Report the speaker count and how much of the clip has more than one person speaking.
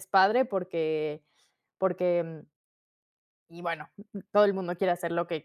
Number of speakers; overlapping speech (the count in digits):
1, no overlap